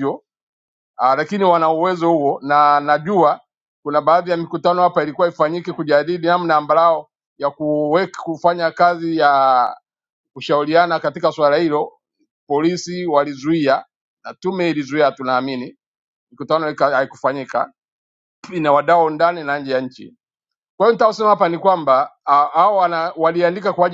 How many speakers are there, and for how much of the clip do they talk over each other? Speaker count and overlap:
one, no overlap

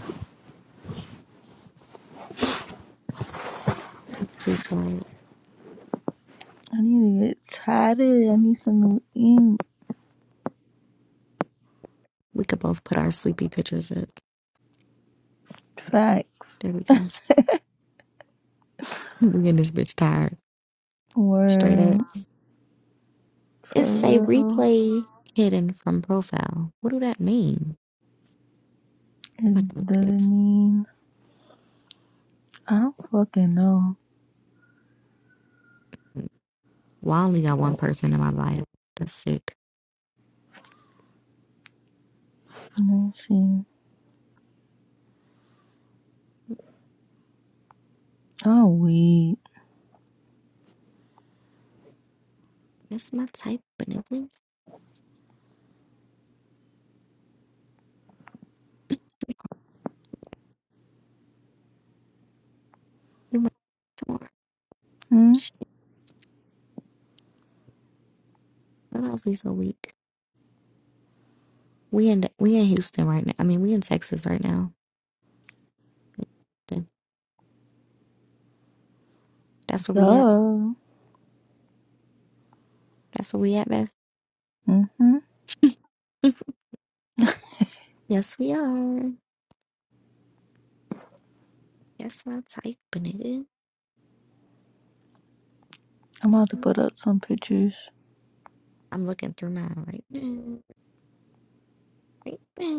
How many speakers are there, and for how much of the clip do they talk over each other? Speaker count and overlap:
two, about 3%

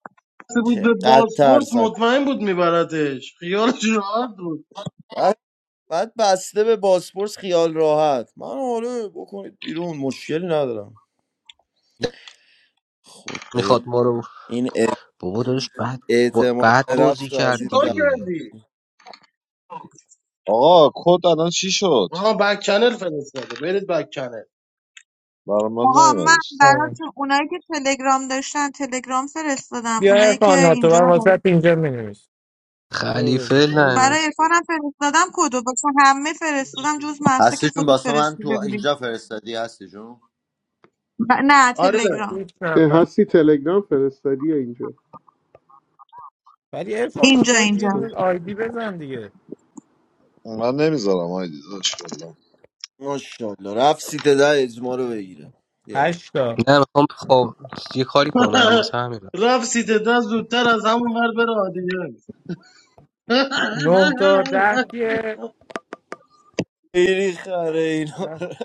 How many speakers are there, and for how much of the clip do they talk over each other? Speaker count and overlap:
eight, about 13%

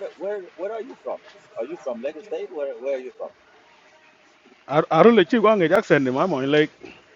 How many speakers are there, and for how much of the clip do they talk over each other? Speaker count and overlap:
two, no overlap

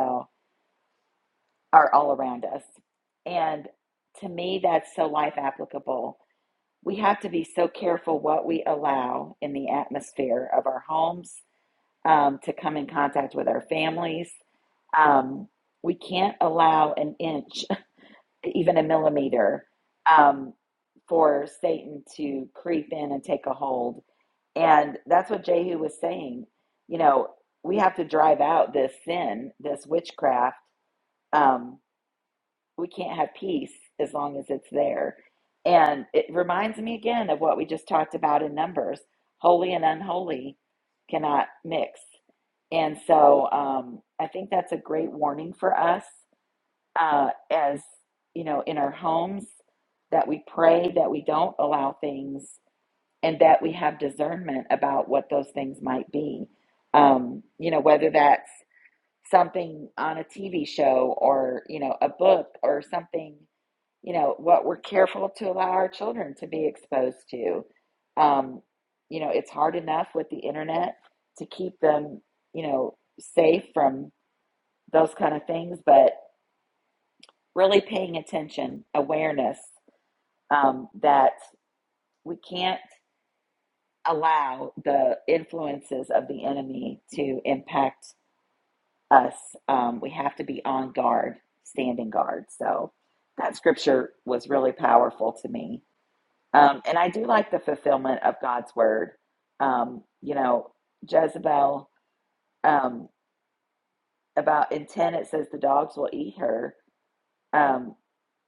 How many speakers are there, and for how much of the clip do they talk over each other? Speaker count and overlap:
one, no overlap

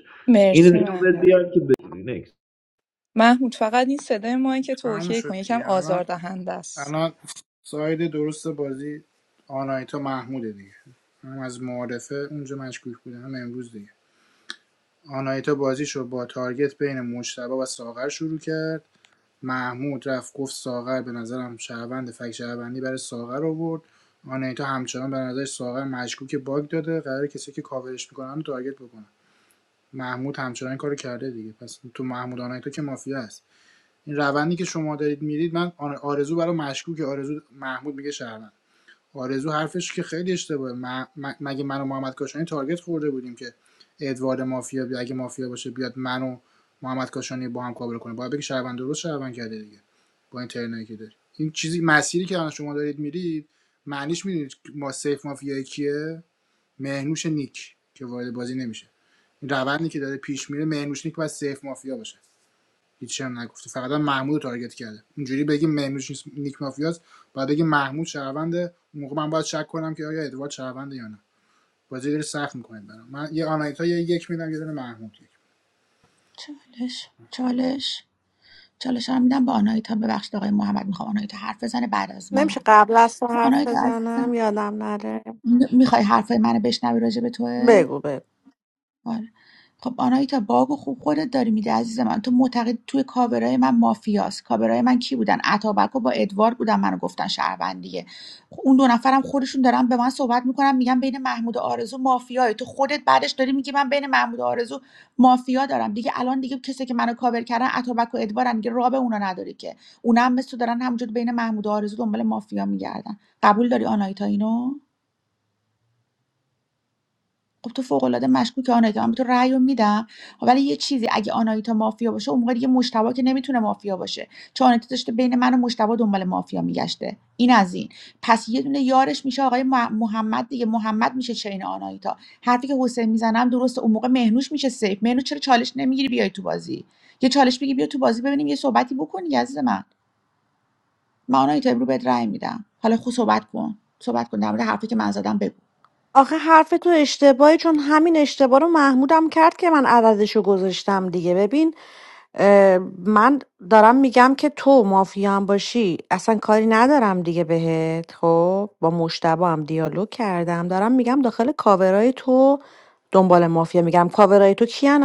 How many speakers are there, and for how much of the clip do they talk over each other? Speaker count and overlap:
five, about 2%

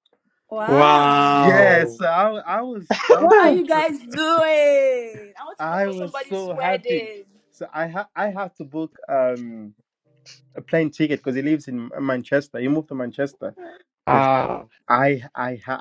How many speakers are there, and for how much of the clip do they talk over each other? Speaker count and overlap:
three, about 19%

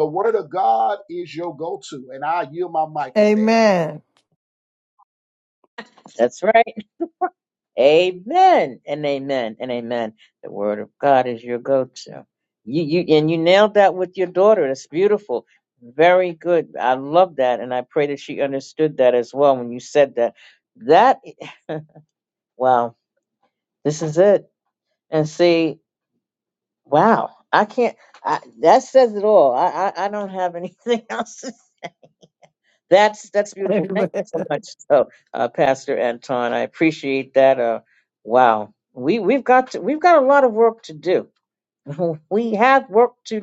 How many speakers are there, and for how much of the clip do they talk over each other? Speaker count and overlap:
three, about 2%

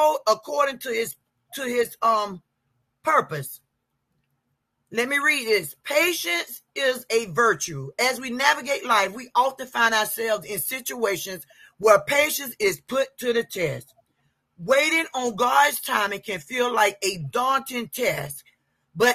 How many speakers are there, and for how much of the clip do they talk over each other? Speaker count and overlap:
one, no overlap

